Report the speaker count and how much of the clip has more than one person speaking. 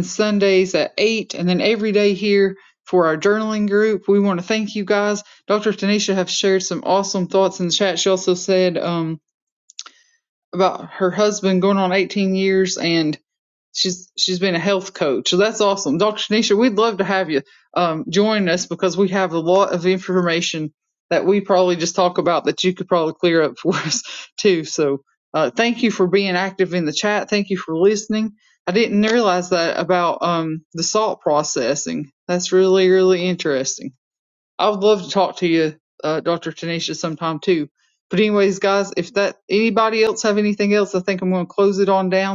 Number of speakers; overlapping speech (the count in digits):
1, no overlap